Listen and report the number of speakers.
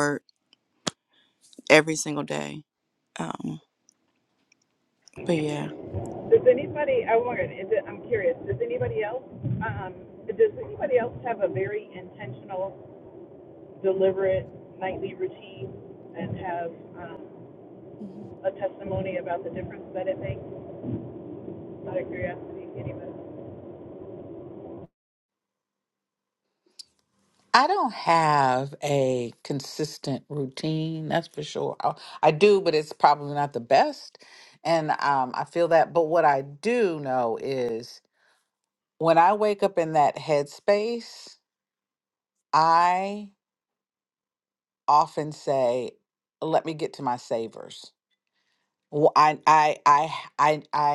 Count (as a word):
three